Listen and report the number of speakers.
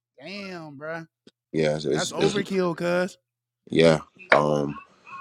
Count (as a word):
two